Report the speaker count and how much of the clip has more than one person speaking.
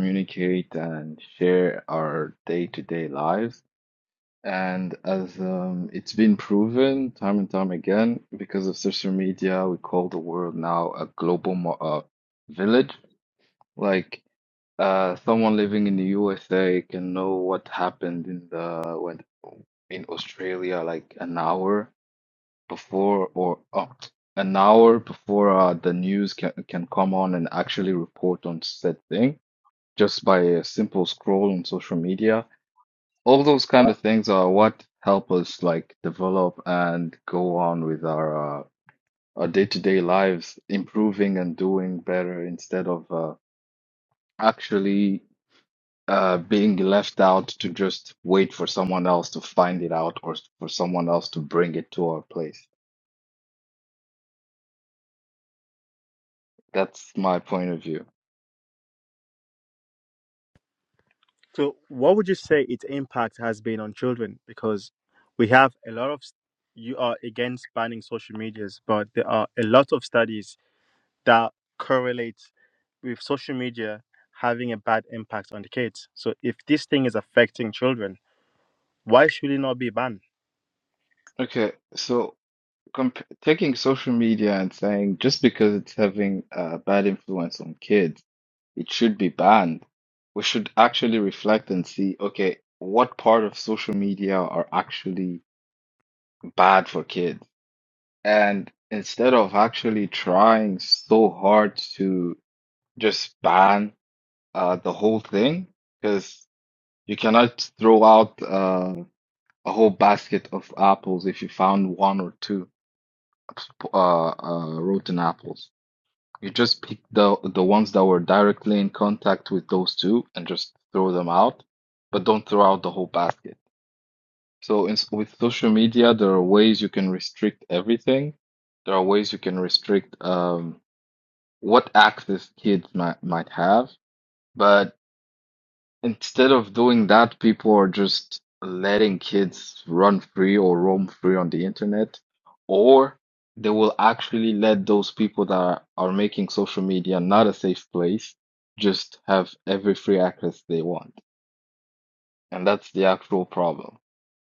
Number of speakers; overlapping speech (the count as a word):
two, no overlap